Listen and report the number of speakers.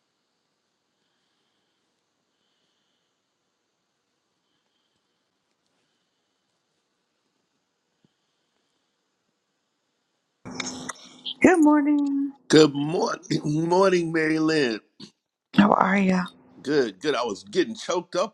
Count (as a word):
two